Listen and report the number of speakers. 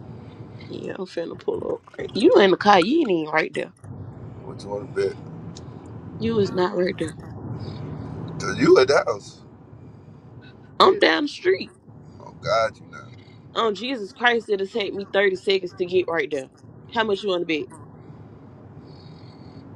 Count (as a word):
two